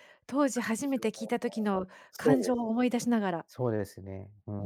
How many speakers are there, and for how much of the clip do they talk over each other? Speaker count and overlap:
2, about 7%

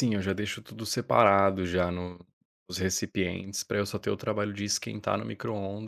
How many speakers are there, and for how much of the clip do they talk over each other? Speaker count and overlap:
1, no overlap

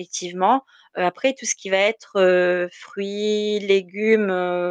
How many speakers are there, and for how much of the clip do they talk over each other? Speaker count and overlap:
1, no overlap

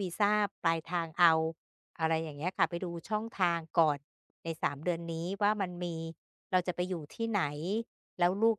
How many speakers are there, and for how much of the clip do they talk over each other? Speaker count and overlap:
1, no overlap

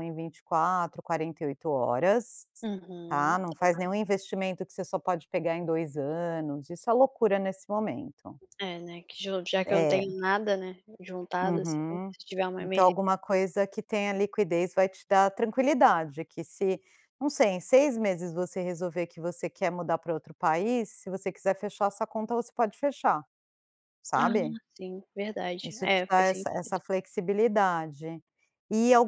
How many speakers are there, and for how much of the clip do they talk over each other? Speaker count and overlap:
2, about 9%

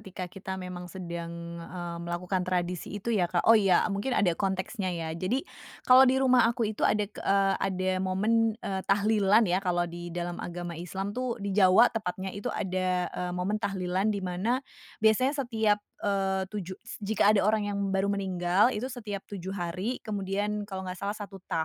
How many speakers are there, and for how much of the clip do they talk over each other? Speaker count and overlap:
1, no overlap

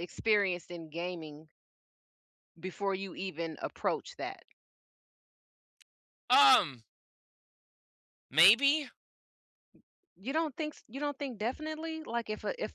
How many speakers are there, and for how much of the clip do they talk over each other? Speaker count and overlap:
2, no overlap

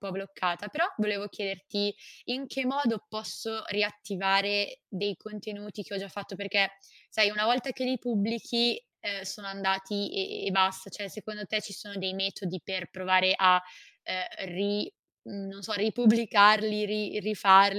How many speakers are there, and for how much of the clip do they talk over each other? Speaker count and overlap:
1, no overlap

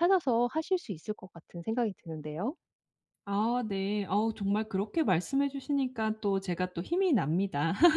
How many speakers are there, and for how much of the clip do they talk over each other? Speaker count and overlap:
2, no overlap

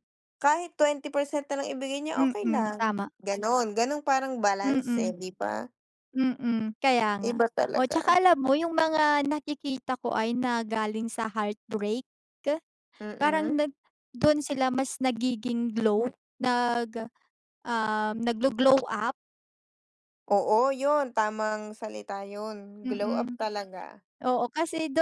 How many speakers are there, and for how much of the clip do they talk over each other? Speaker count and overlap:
2, about 12%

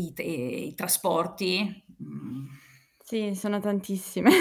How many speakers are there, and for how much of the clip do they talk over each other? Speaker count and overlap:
2, no overlap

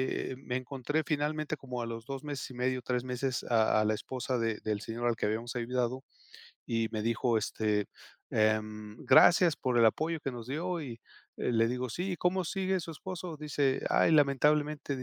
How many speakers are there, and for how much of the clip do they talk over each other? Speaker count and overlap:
1, no overlap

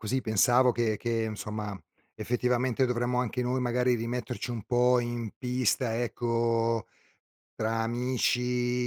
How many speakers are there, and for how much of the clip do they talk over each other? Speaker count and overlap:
1, no overlap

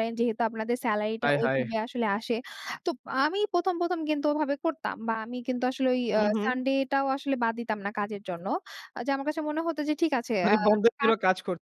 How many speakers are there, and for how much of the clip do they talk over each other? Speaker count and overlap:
2, about 11%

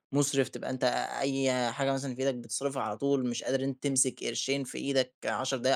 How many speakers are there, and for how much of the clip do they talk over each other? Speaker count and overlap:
1, no overlap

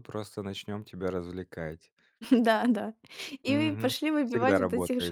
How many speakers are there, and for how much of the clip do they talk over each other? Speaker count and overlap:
2, about 24%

